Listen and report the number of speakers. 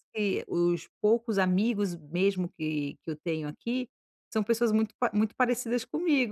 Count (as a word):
one